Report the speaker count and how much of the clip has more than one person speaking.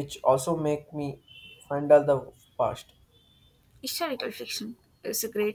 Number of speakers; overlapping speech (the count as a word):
two, no overlap